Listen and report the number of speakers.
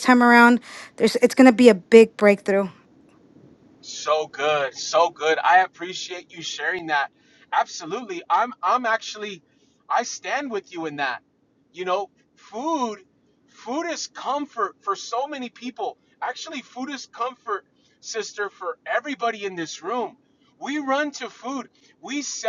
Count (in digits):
2